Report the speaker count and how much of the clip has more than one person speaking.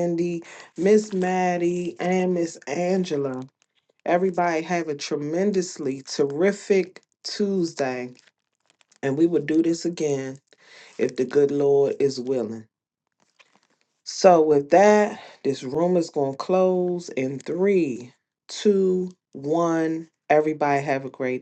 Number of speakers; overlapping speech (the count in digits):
1, no overlap